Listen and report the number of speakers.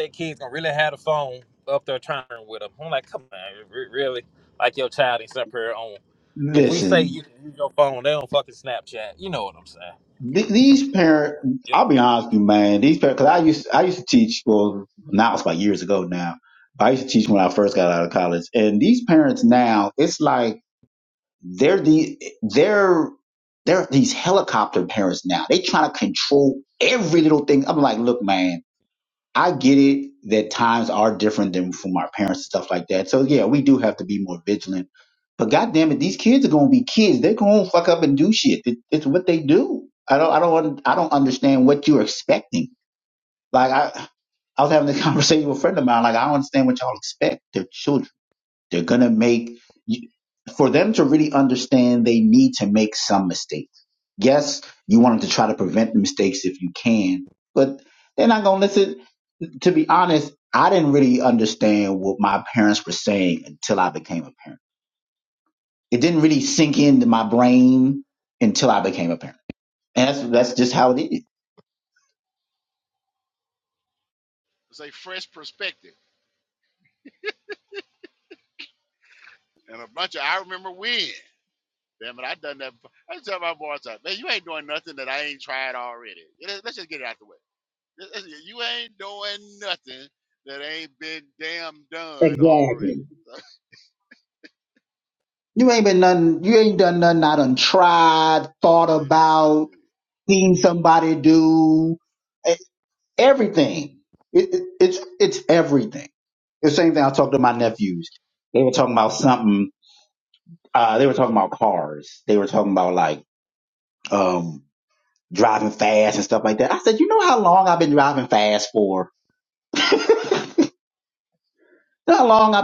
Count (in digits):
3